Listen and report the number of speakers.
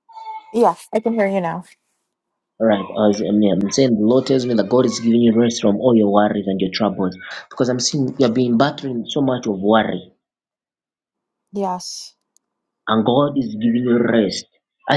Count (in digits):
2